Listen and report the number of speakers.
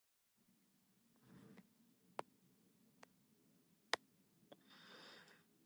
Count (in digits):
0